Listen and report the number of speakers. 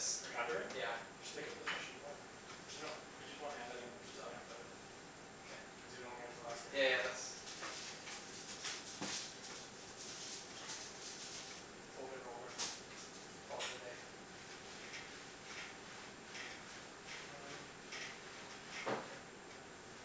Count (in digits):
2